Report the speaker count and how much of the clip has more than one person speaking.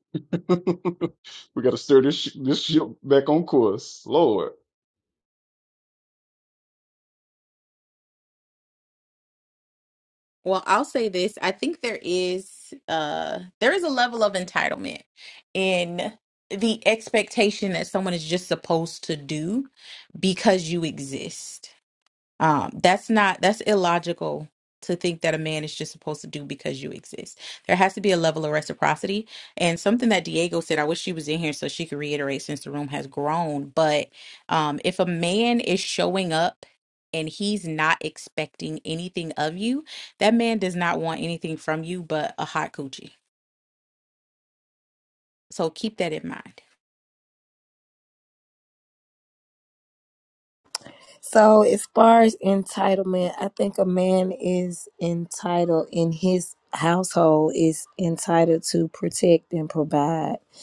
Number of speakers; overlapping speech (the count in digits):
3, no overlap